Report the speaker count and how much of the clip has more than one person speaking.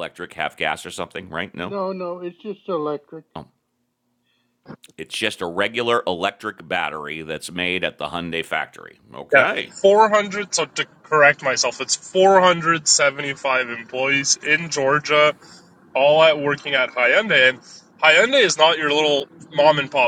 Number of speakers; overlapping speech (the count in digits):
3, about 1%